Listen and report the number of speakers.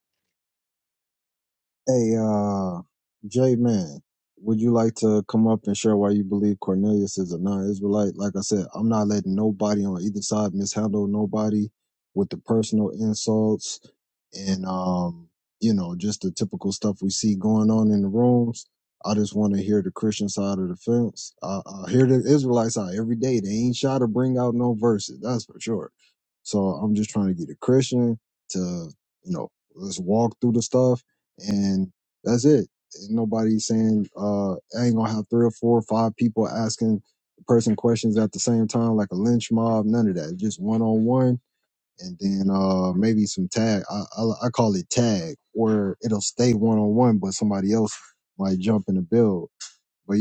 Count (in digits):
1